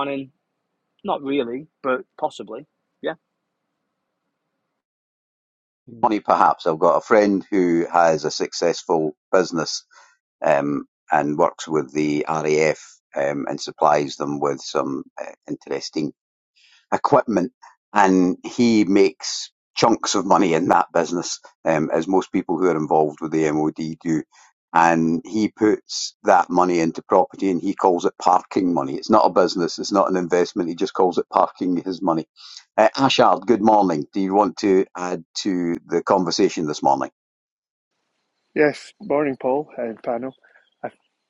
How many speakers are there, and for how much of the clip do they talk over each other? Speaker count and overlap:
three, no overlap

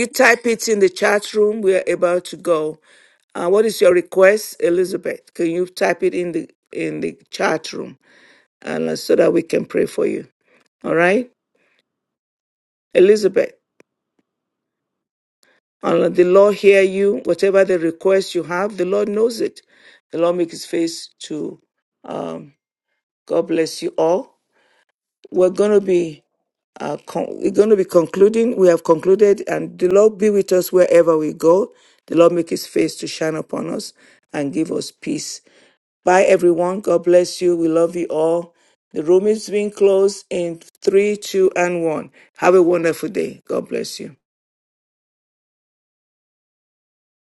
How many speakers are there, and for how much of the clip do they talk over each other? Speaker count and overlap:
one, no overlap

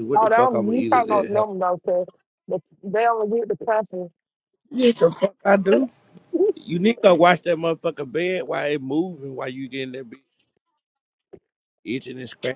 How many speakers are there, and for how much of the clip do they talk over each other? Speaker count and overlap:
two, about 12%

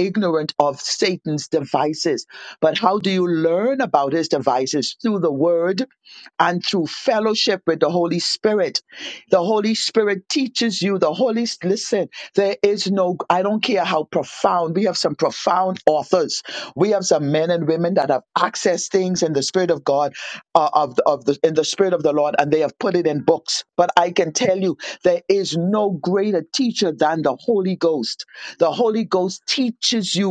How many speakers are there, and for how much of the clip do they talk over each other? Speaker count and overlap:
one, no overlap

